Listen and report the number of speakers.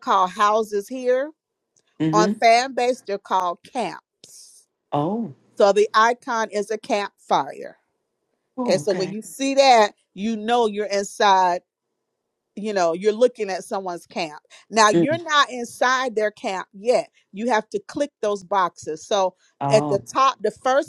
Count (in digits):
2